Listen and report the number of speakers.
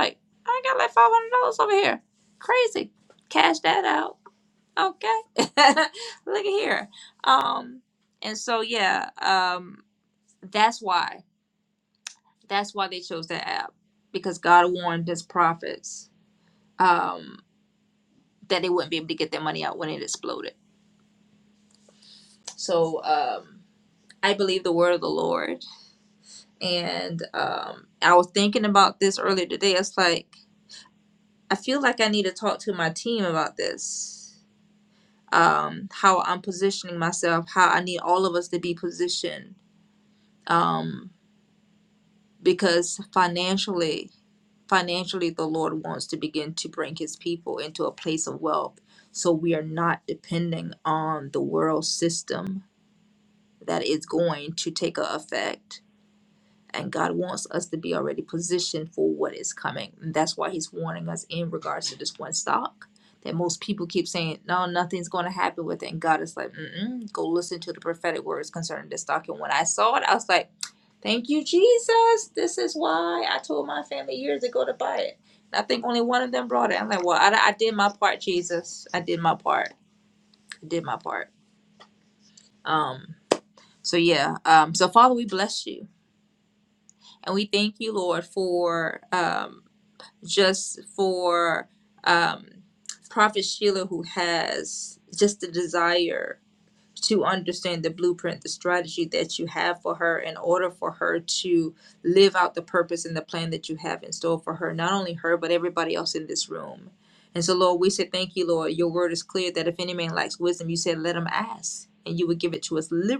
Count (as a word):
one